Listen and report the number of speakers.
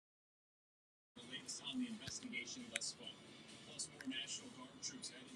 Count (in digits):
0